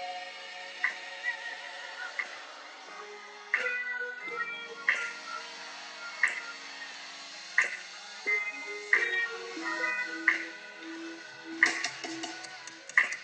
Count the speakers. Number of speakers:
zero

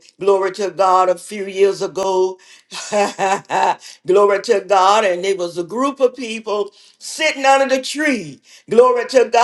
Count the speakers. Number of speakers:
one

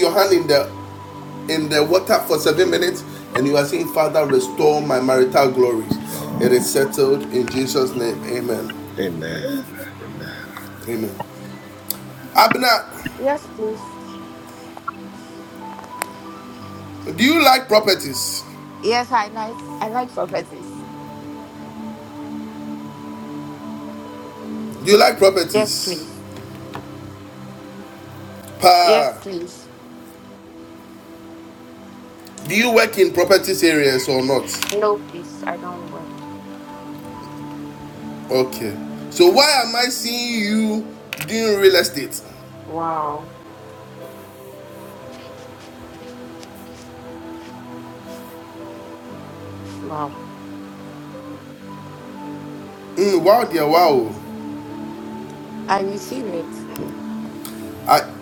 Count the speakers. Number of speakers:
three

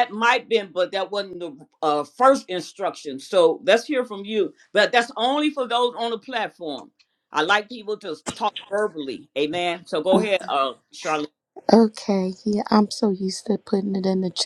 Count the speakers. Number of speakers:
two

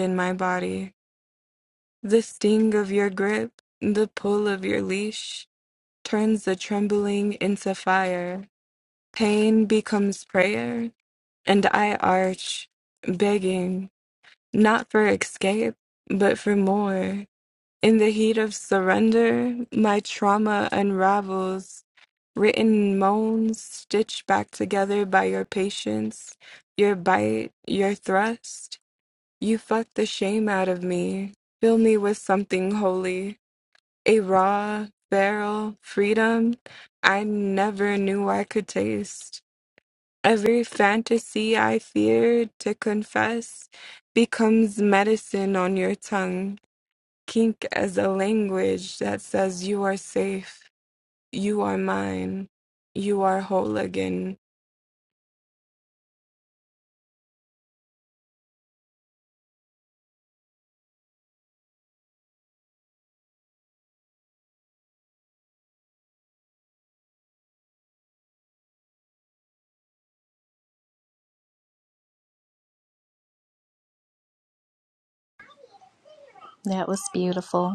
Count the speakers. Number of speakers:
two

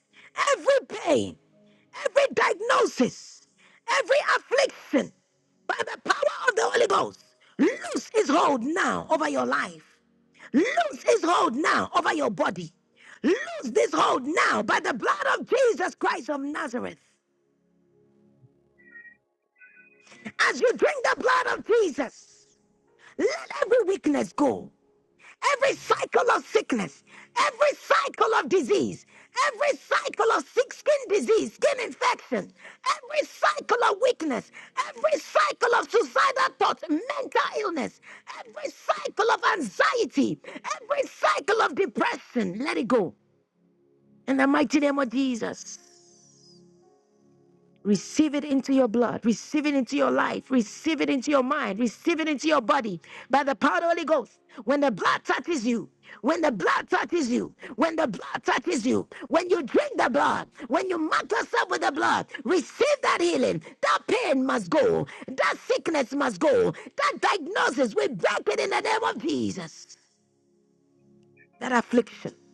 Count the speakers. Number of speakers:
one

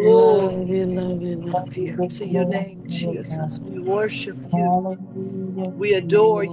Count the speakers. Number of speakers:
three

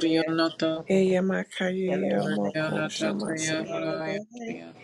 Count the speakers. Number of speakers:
three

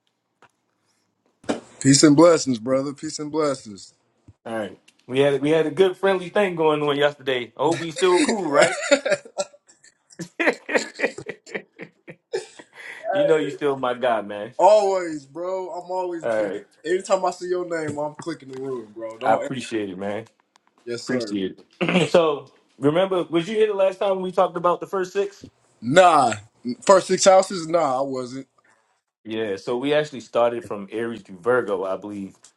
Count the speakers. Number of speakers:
two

